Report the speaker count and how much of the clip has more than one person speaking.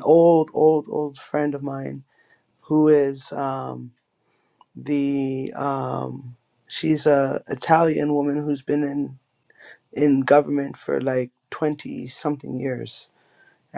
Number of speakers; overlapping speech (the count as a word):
one, no overlap